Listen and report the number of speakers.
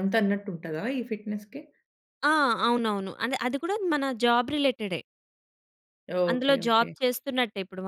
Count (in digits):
2